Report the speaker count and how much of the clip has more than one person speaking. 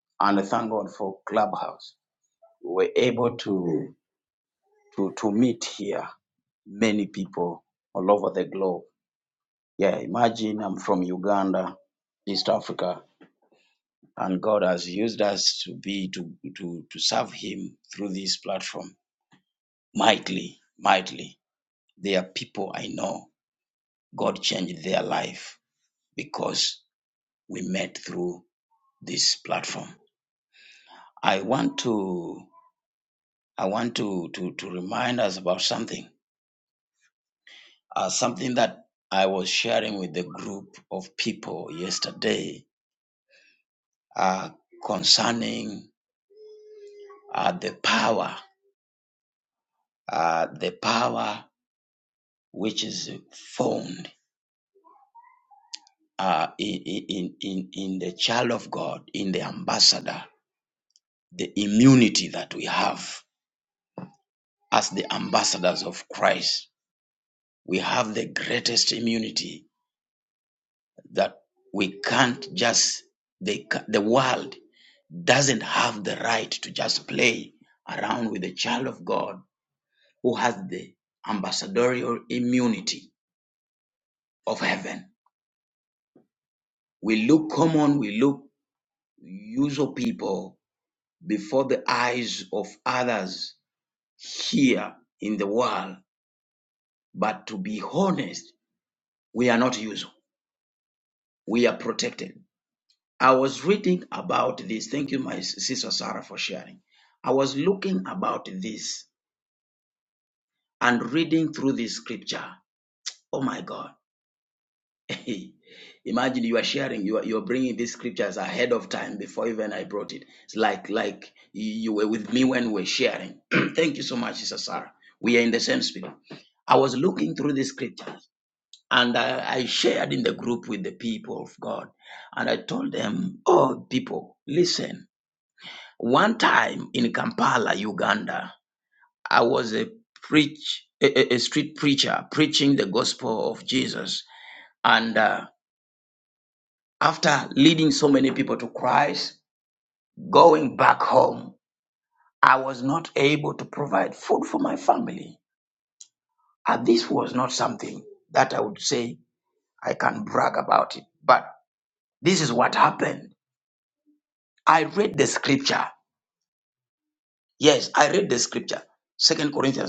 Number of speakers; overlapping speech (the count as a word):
one, no overlap